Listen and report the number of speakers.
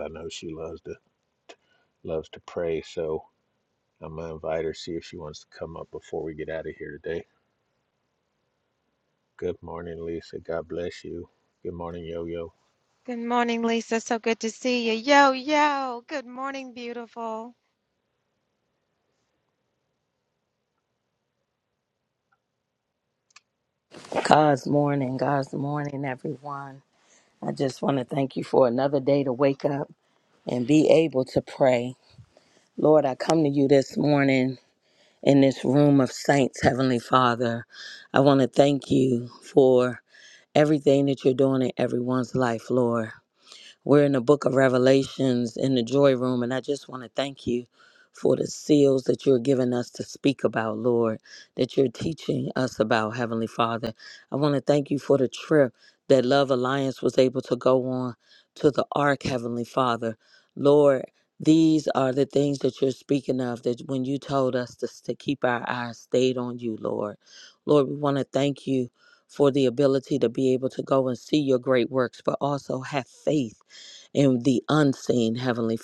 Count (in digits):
3